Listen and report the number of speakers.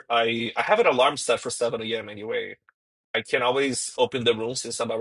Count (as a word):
one